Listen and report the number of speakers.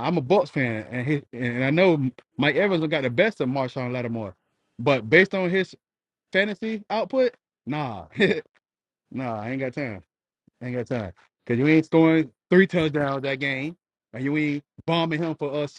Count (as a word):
one